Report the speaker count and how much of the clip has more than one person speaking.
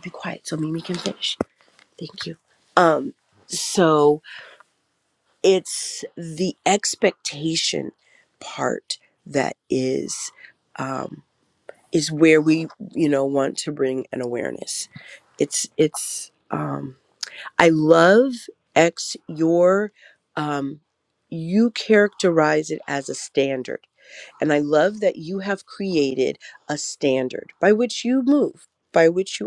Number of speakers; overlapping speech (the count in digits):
1, no overlap